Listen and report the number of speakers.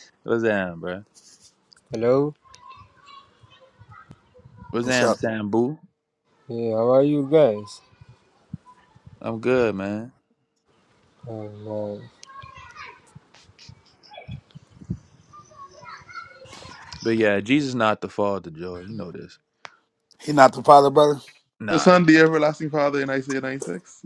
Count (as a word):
four